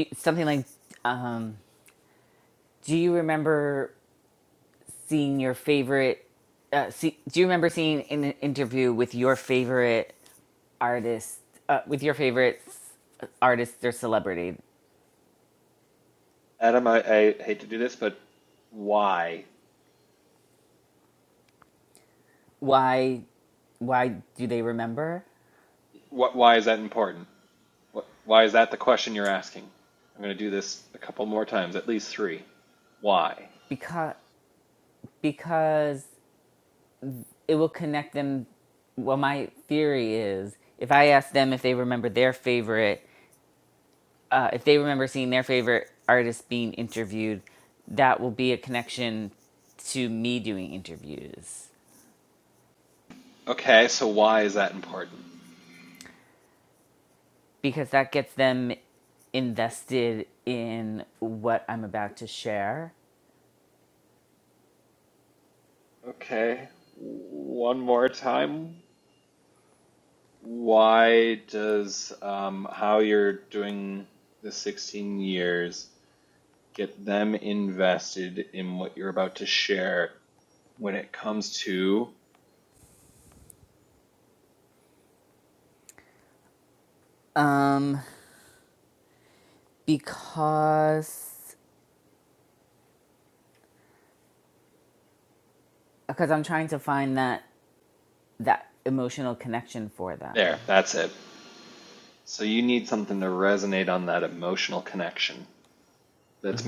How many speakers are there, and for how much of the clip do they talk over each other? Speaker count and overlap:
two, under 1%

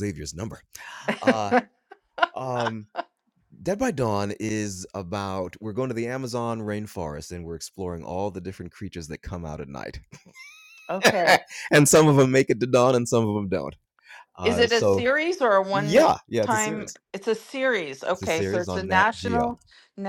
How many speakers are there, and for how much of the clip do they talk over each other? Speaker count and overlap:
two, about 13%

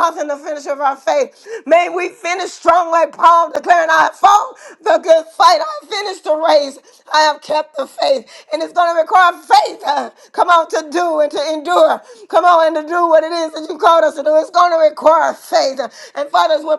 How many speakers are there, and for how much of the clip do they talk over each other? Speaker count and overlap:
one, no overlap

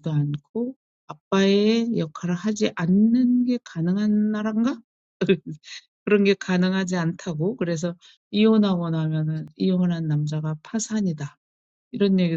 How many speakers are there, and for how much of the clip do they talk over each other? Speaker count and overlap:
one, no overlap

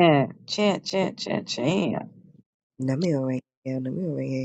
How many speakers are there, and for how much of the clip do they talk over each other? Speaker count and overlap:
two, no overlap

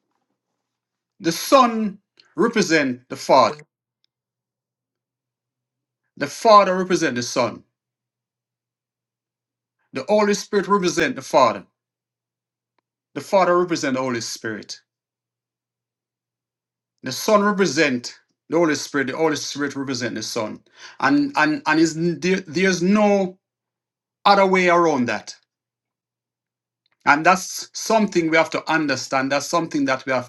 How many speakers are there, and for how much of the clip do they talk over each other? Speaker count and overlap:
one, no overlap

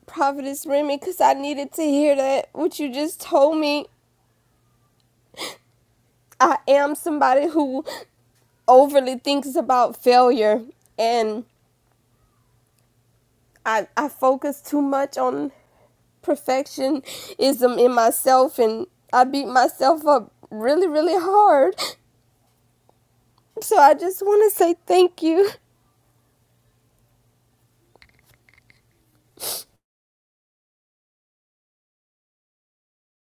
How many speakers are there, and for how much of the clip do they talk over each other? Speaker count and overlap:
one, no overlap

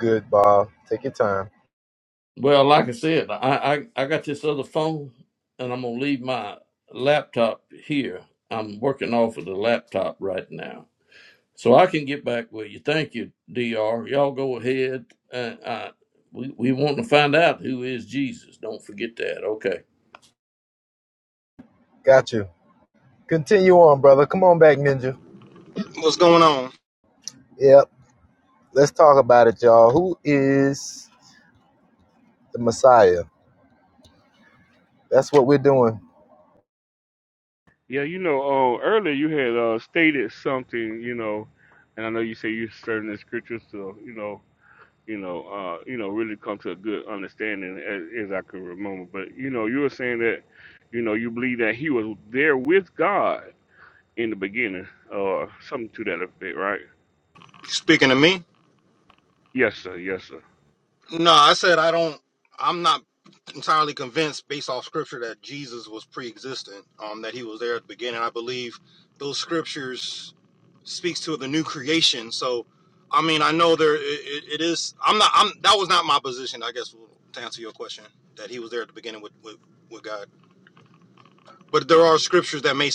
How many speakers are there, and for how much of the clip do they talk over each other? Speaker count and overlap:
four, no overlap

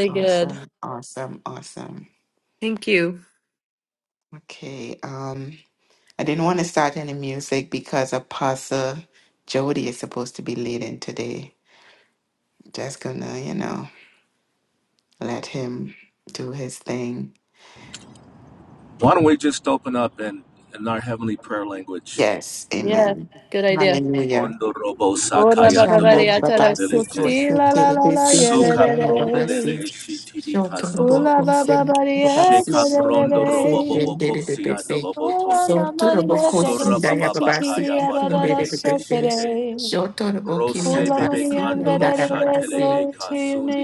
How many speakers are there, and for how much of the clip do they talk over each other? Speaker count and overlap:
three, about 41%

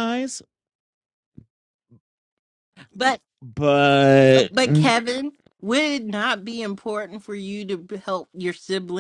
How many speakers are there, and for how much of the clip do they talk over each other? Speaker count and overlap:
two, about 6%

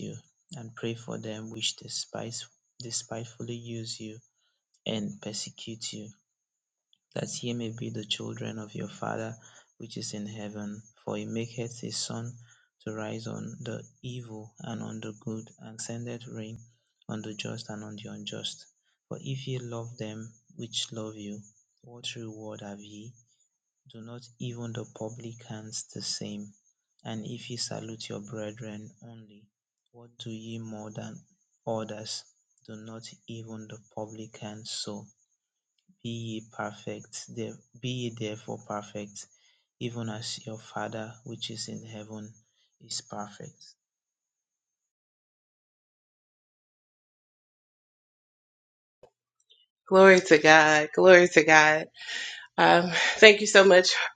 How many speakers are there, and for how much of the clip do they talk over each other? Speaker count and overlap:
two, no overlap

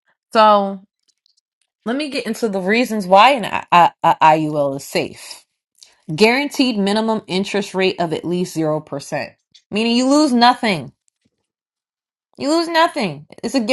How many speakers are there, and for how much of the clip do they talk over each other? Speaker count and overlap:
one, no overlap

